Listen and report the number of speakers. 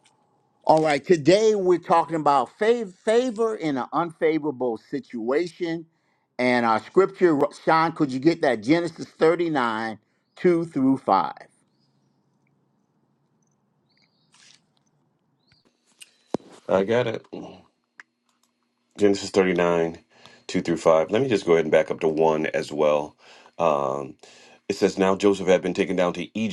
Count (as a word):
two